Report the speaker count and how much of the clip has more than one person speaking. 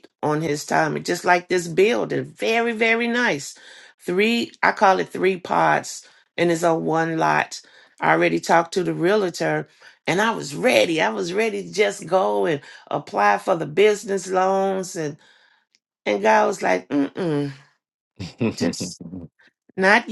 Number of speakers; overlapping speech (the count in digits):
1, no overlap